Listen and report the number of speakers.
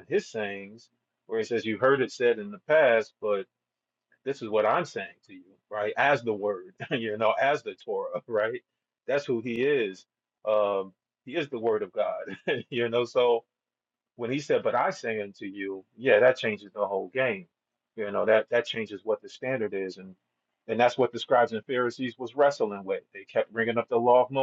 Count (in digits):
1